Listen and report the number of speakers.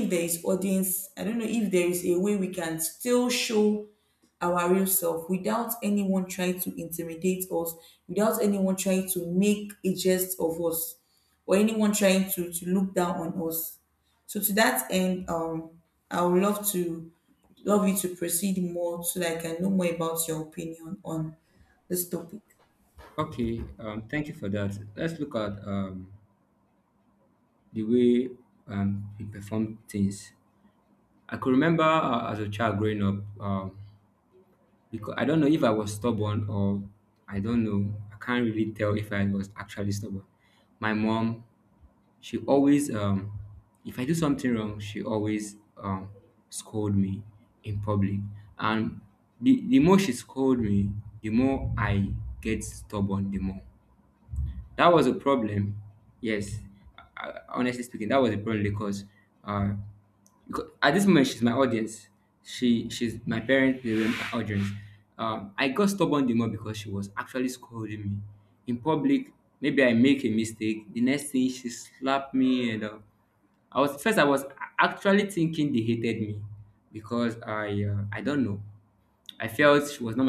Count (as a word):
two